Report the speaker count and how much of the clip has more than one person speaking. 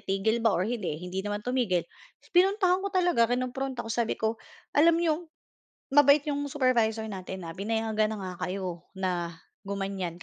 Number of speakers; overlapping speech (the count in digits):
1, no overlap